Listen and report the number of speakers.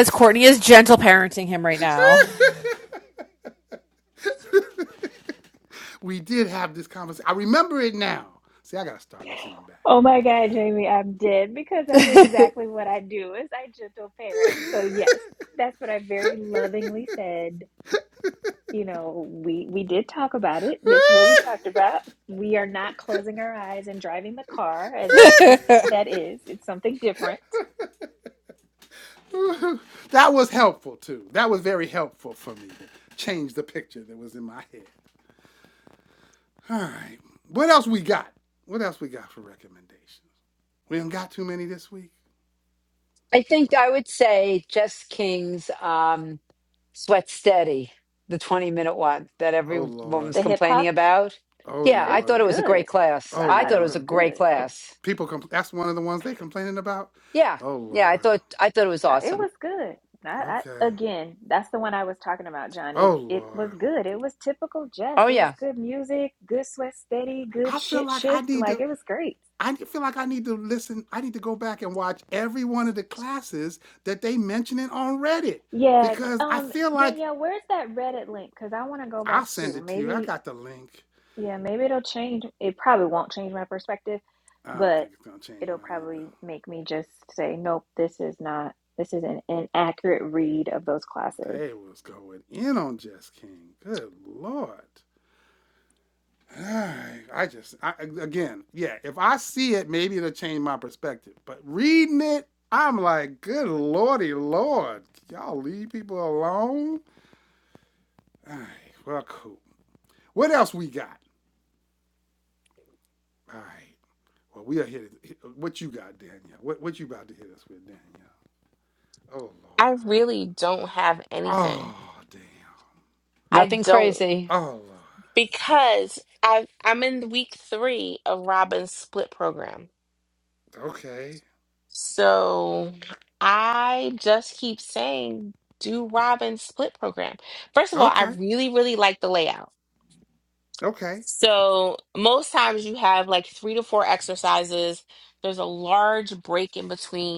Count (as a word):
five